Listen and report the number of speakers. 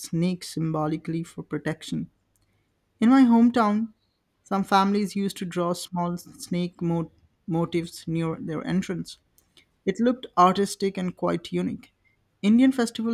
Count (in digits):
1